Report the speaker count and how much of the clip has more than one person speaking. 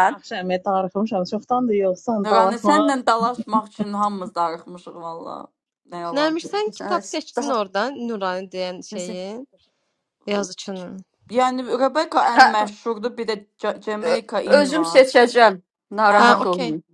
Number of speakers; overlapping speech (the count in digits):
4, about 16%